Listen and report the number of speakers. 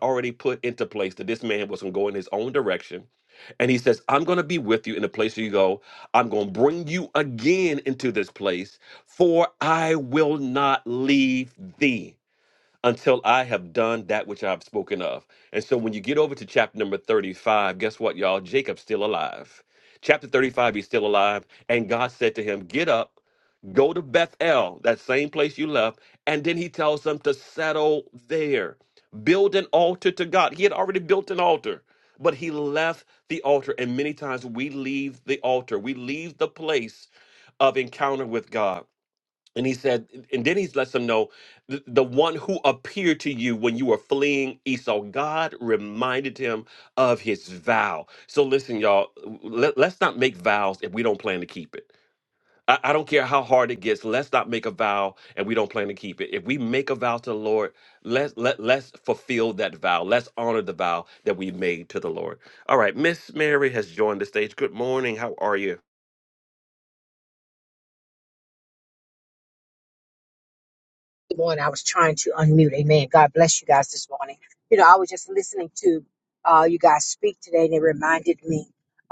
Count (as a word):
two